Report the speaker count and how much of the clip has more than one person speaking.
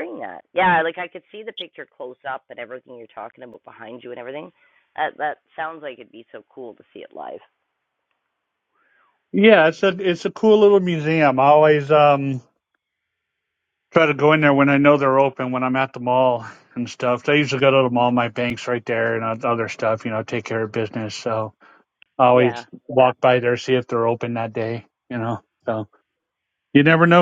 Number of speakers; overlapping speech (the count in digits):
2, about 1%